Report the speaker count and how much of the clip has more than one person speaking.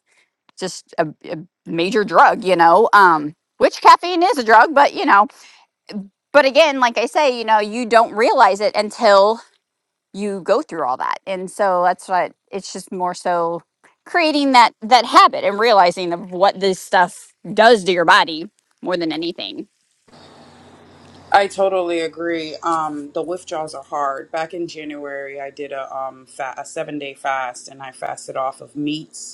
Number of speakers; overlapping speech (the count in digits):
2, no overlap